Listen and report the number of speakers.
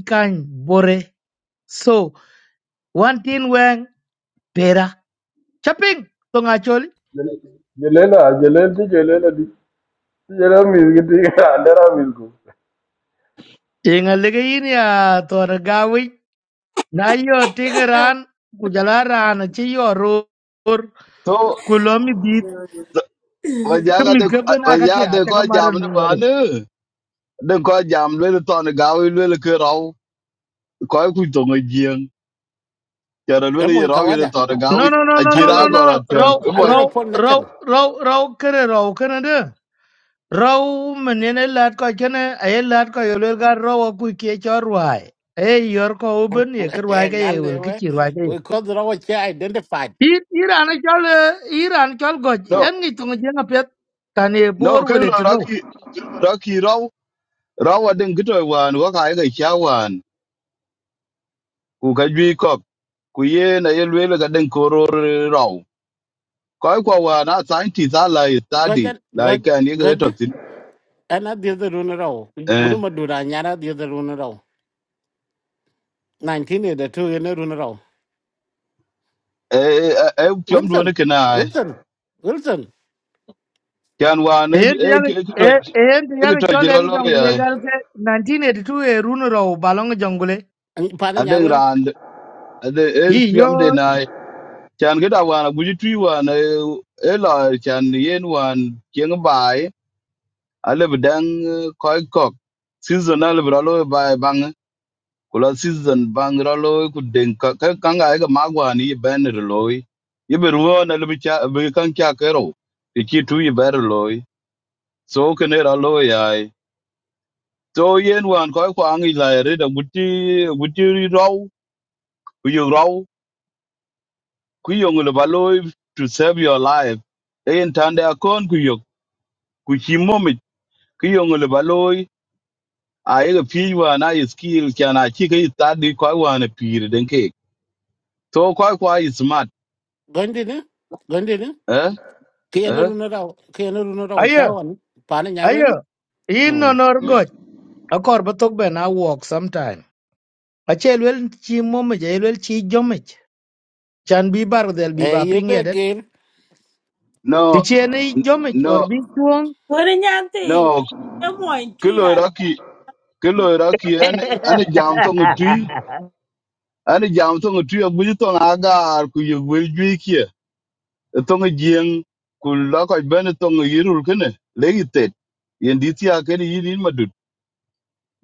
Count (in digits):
5